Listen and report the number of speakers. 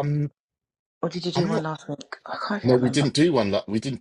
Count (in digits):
2